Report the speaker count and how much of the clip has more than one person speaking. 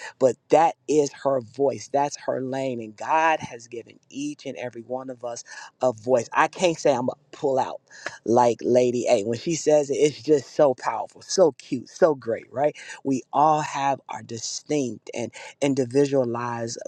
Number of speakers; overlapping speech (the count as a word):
one, no overlap